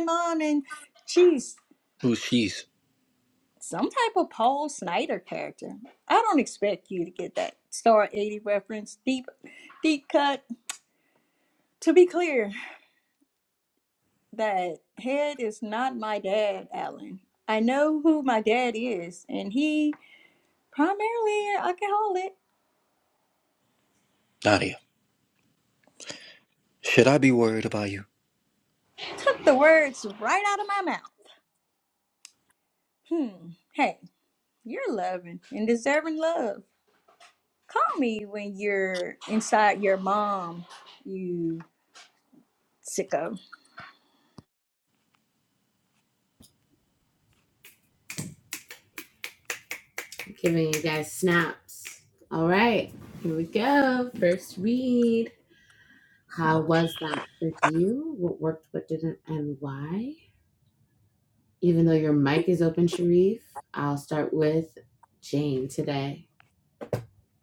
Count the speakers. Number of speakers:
three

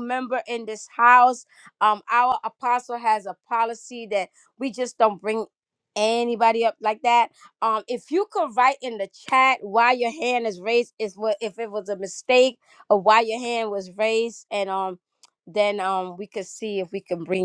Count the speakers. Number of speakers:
one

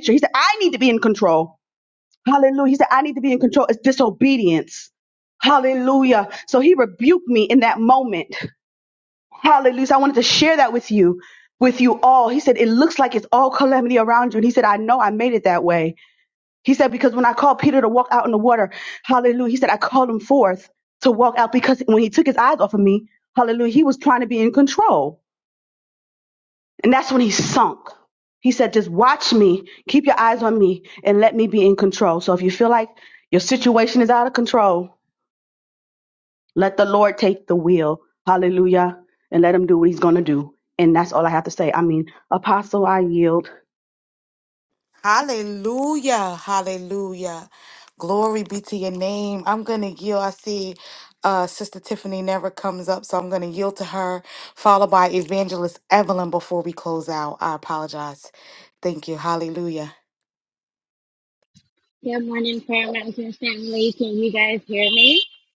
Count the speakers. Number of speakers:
three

